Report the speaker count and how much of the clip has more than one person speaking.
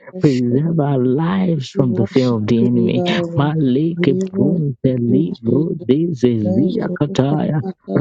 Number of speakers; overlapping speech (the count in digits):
2, about 56%